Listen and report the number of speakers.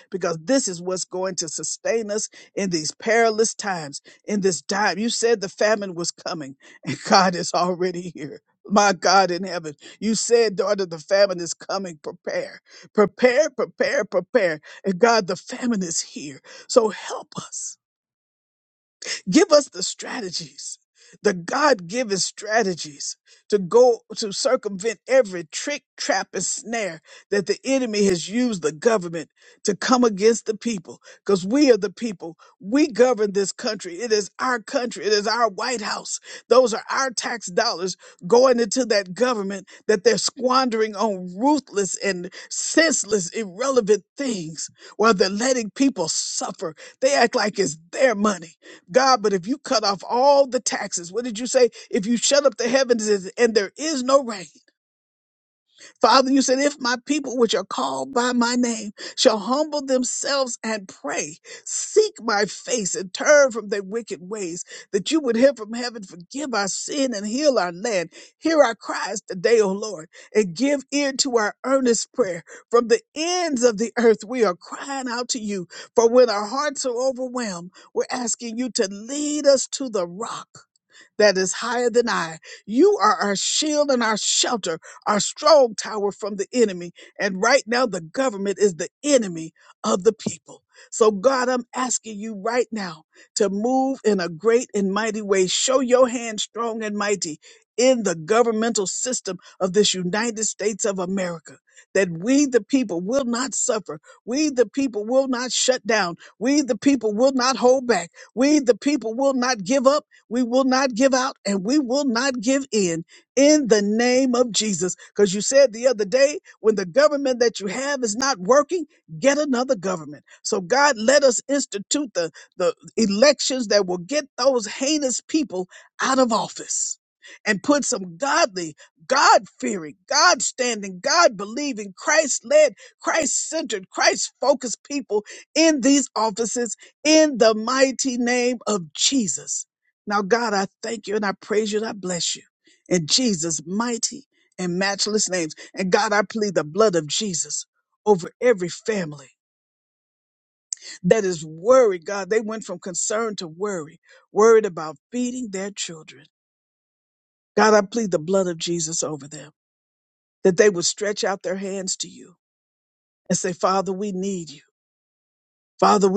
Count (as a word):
one